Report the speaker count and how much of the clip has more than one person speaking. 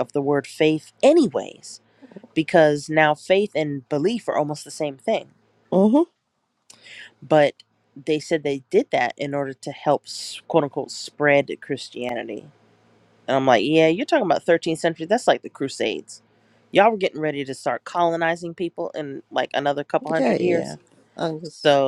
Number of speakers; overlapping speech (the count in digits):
2, about 2%